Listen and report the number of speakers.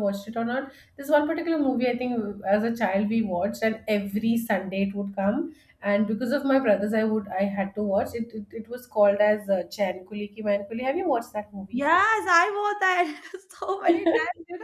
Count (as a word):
two